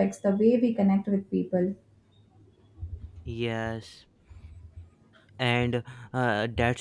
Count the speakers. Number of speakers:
2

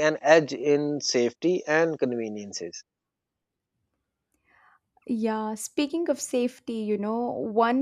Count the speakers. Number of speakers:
2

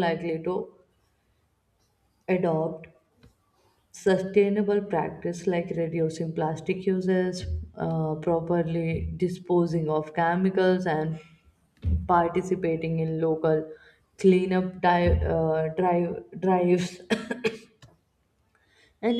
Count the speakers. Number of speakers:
1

